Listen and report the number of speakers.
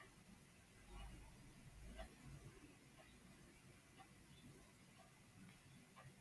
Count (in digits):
0